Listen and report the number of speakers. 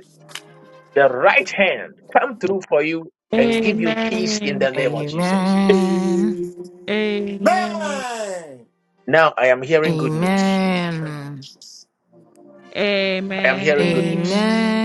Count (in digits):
4